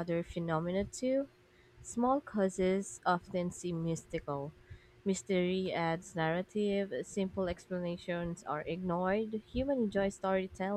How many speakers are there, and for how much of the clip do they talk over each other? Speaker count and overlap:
1, no overlap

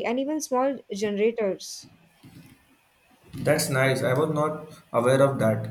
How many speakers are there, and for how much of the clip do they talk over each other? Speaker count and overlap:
2, no overlap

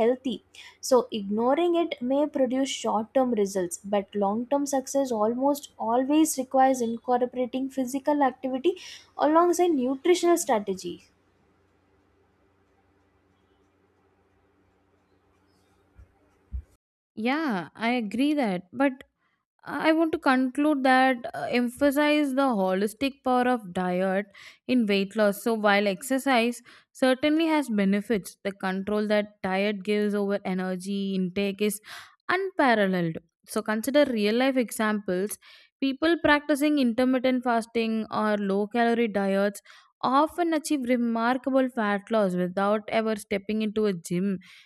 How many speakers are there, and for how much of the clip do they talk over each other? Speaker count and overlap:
2, no overlap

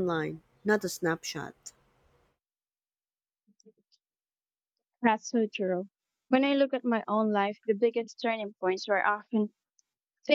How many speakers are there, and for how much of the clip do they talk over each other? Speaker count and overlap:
2, no overlap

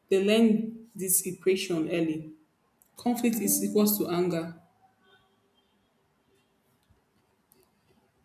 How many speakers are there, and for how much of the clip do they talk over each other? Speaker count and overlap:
1, no overlap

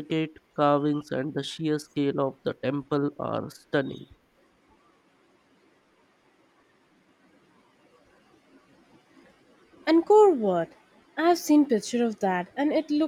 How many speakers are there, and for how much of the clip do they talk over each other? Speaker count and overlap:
2, no overlap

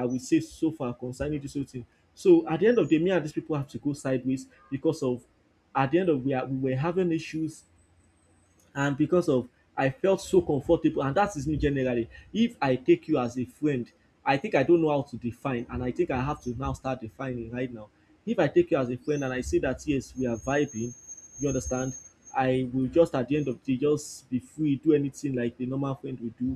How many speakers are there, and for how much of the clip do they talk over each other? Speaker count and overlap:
1, no overlap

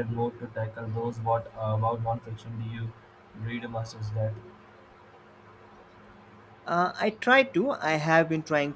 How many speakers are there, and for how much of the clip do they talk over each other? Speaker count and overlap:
2, no overlap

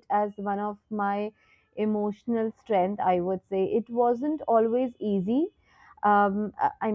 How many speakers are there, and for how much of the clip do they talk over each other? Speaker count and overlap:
1, no overlap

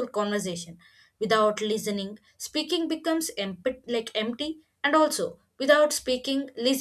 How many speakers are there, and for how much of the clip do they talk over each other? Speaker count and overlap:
1, no overlap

